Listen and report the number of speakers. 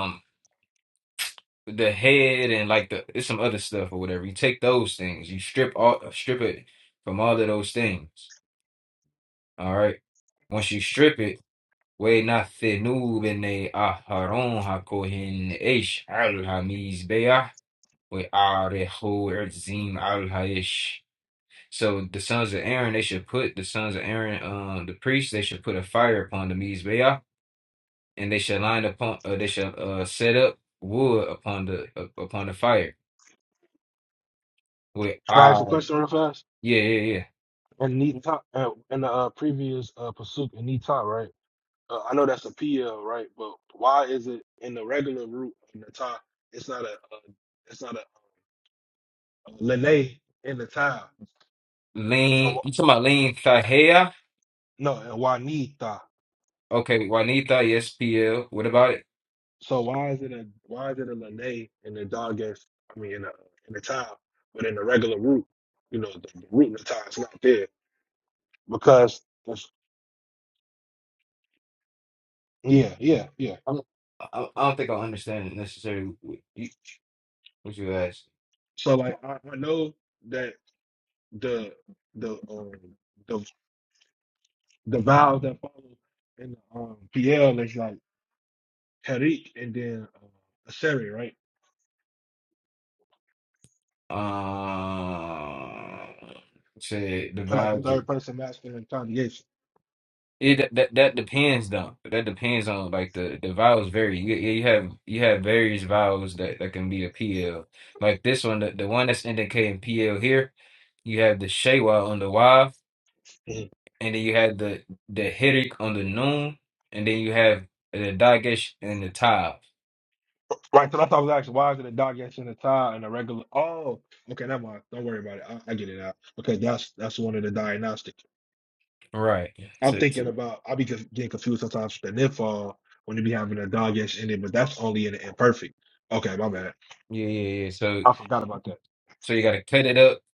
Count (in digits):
2